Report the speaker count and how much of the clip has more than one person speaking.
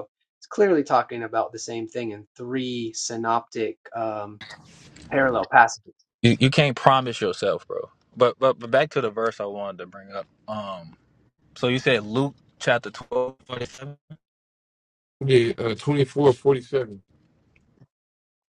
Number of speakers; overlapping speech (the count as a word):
three, no overlap